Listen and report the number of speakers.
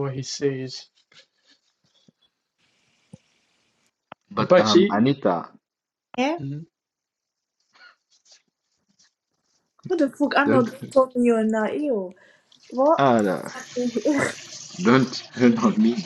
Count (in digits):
3